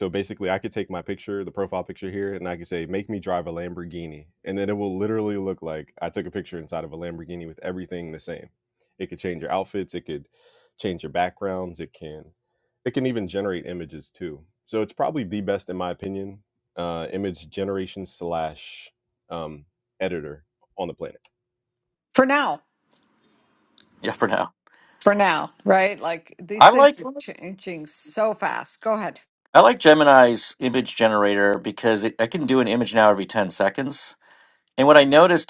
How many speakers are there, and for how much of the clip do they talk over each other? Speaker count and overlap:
3, about 1%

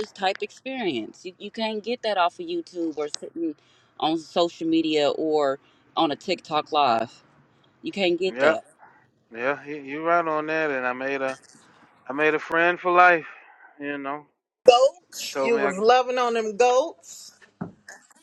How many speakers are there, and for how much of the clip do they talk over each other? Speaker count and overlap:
3, about 4%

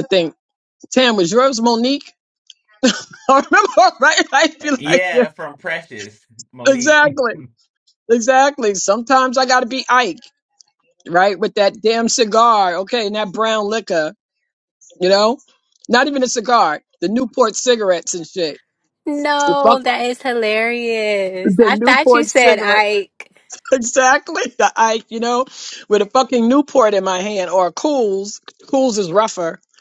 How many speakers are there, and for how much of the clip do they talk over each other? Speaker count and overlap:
3, about 7%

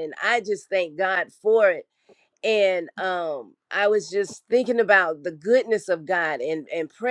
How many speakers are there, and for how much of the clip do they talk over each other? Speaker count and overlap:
1, no overlap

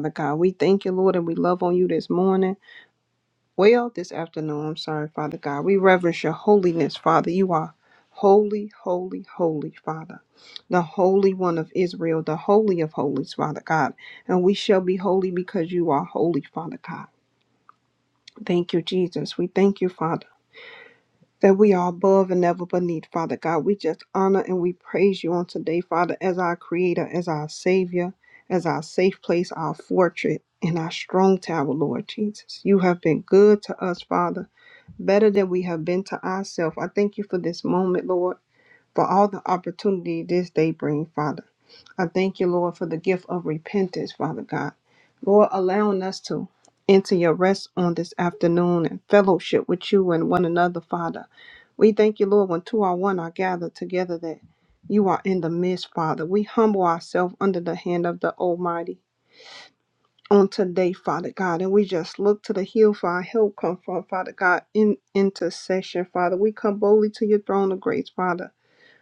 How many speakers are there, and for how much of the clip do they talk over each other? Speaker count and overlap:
1, no overlap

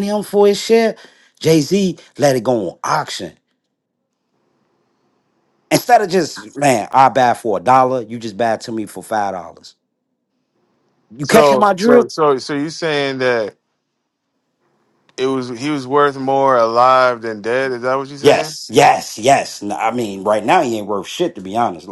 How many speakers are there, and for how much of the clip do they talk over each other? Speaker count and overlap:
2, about 5%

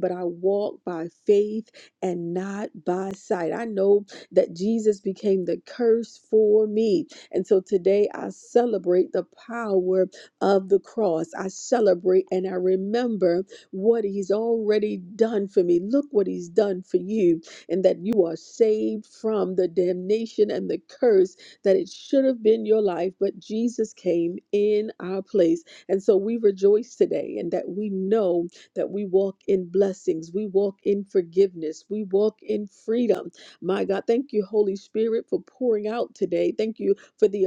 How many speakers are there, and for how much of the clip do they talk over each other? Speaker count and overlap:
1, no overlap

